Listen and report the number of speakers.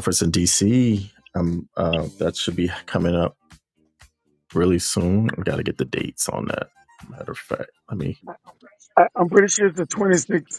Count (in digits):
2